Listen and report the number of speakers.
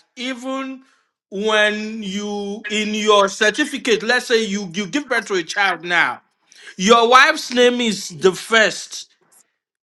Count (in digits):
1